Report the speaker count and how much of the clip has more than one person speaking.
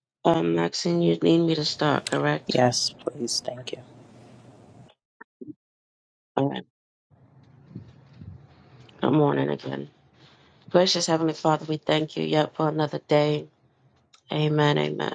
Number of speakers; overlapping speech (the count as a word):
two, about 1%